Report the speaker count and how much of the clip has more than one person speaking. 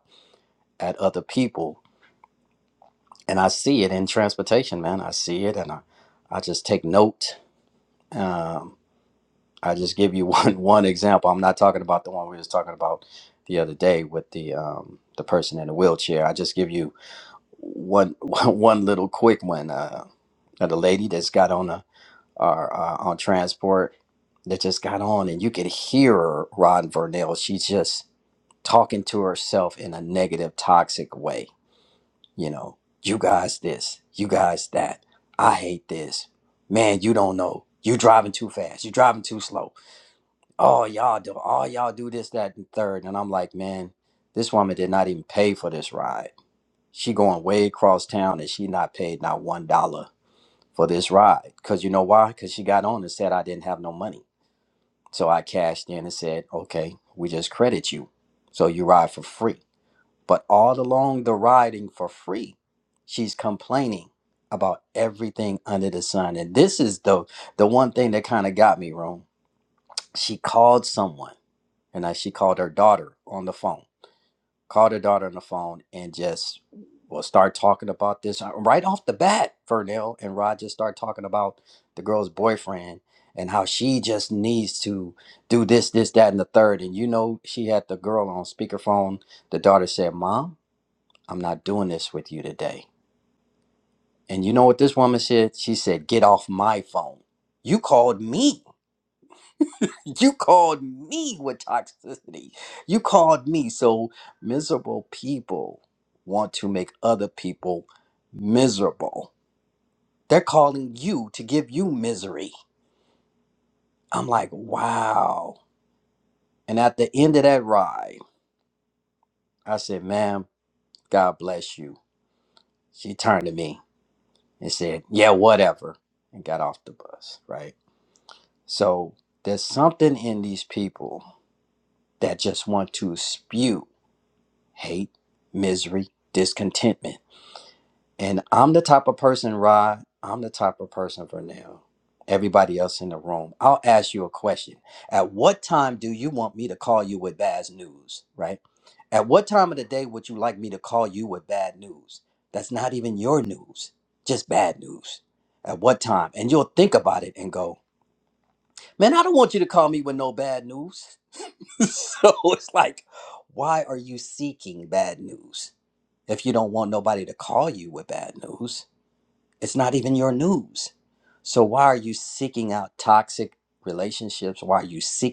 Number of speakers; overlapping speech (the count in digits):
1, no overlap